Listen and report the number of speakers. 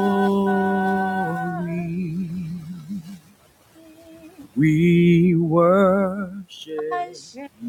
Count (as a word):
two